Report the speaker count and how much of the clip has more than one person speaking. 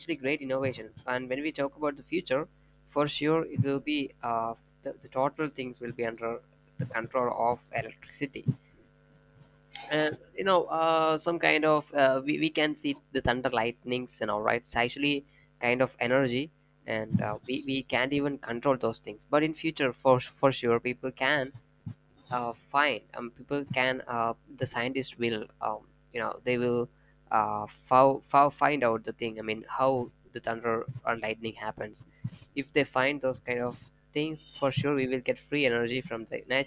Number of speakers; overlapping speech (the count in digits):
1, no overlap